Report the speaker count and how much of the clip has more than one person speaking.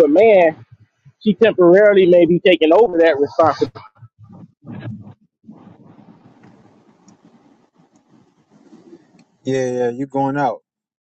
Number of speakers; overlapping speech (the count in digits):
2, no overlap